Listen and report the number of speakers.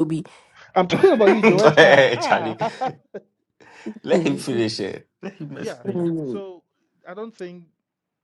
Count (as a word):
three